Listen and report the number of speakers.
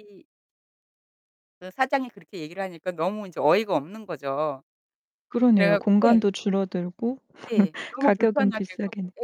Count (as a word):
two